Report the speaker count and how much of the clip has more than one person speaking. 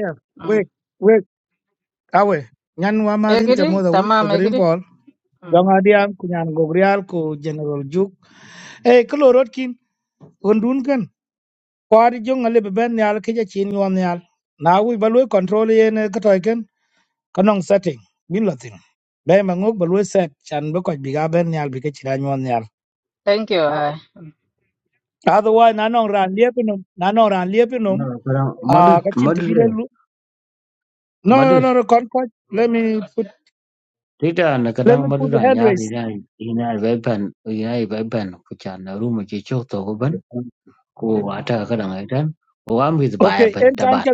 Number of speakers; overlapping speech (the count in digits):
3, about 11%